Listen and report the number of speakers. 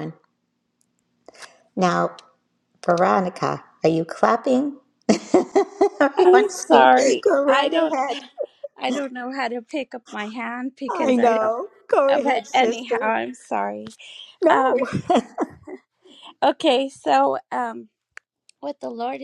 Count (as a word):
two